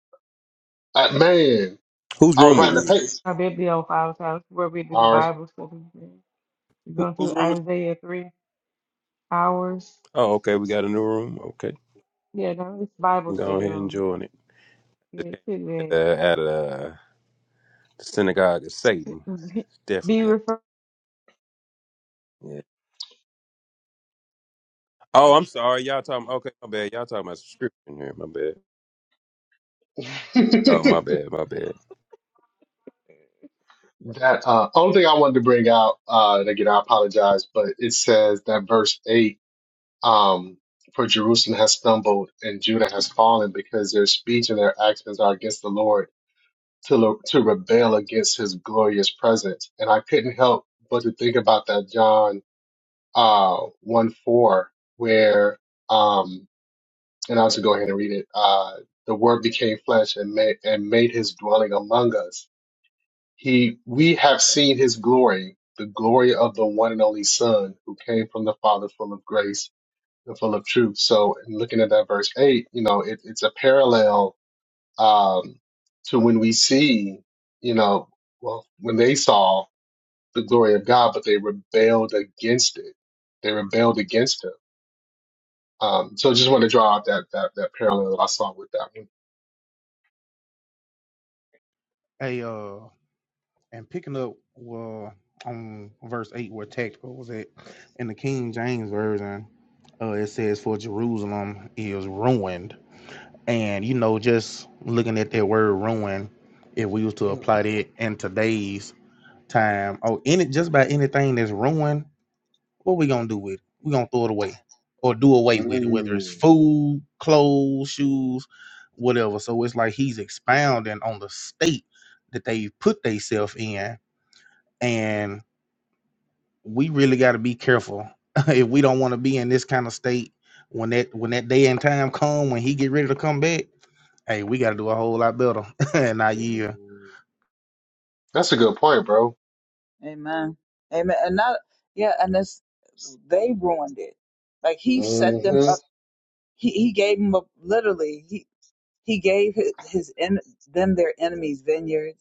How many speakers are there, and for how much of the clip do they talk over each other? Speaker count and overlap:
5, about 3%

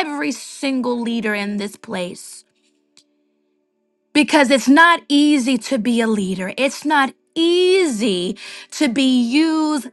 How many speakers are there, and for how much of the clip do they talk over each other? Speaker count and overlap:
1, no overlap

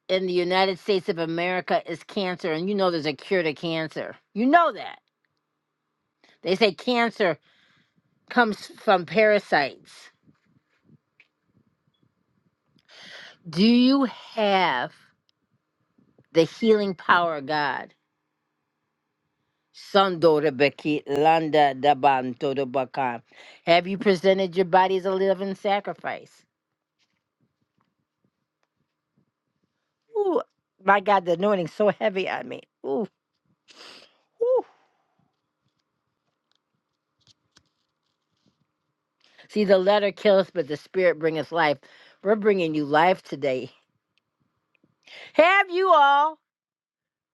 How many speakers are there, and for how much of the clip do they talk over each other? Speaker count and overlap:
1, no overlap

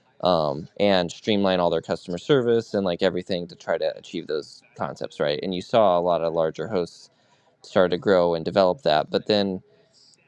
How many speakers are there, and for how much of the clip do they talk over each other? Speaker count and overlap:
1, no overlap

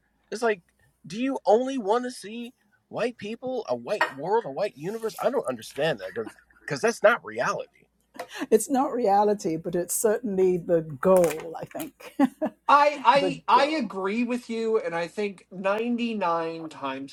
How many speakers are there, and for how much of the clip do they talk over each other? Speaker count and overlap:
3, about 4%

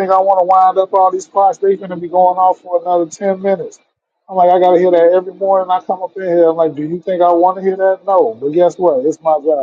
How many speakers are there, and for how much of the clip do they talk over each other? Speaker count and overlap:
1, no overlap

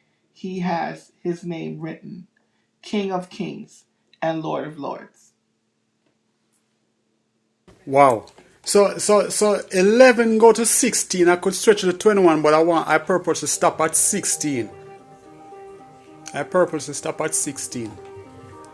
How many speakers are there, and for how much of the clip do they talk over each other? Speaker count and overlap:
2, no overlap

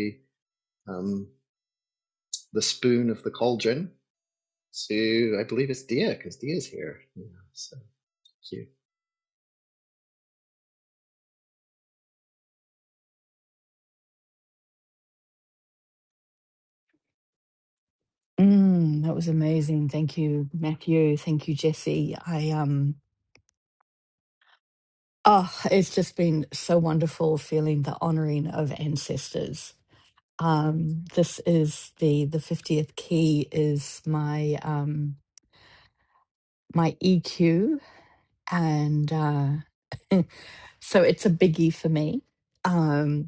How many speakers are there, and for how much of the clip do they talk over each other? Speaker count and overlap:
2, no overlap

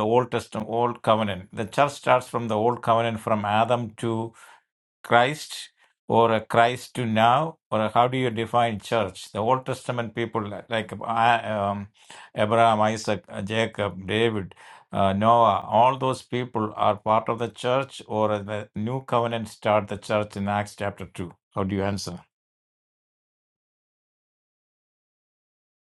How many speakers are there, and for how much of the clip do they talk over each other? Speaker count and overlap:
1, no overlap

